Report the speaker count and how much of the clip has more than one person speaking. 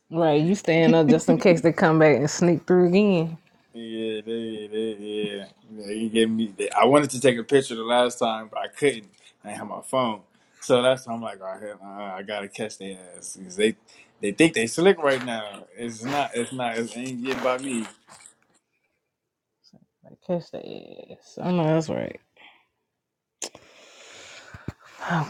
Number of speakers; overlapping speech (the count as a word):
two, no overlap